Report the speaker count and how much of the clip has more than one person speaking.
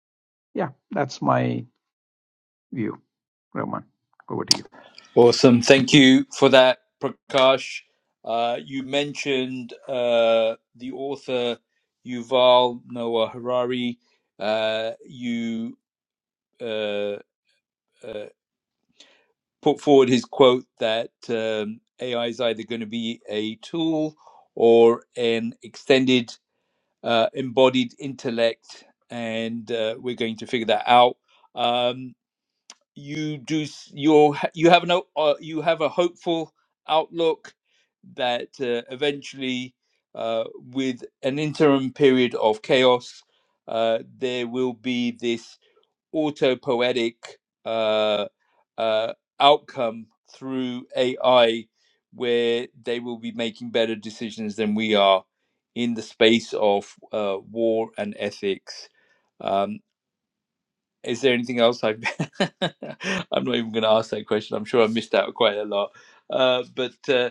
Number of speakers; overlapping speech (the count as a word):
two, no overlap